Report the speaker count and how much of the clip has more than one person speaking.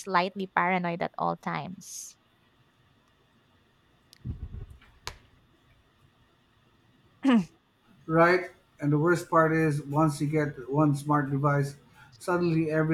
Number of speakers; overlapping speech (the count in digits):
2, no overlap